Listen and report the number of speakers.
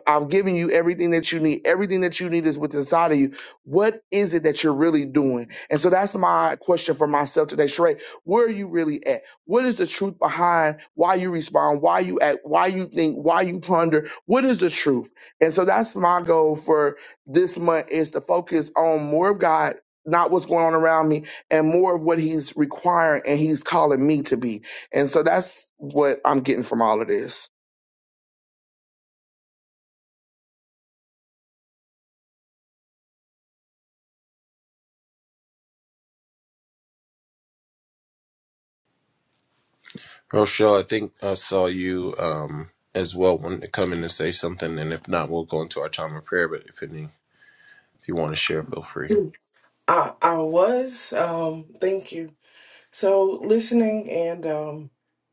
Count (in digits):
3